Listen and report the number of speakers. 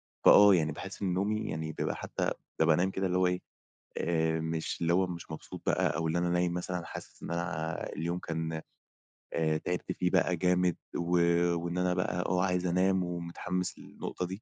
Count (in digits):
1